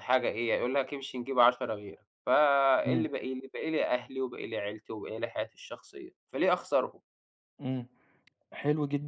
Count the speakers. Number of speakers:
2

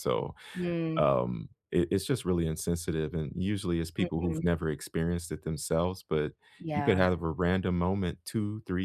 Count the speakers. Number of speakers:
2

